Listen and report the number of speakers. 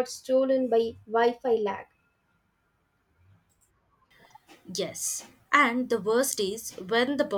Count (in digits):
2